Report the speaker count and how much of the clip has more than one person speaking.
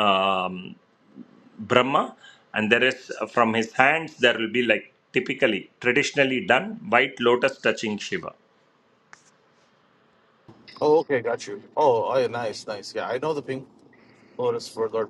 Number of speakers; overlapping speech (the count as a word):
two, no overlap